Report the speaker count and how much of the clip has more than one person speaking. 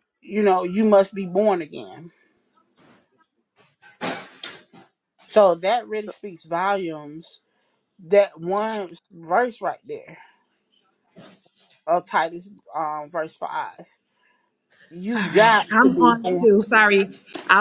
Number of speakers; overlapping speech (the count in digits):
2, about 7%